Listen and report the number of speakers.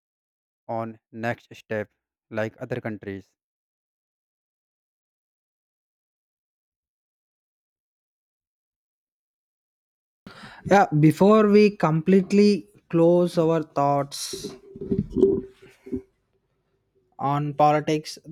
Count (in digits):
2